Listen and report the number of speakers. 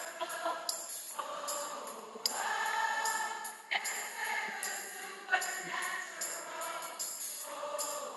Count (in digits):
0